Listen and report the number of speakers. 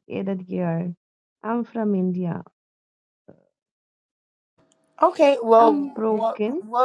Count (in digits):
2